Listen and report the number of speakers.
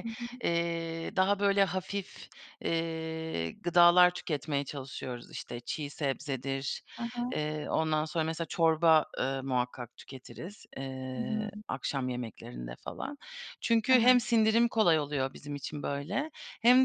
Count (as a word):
two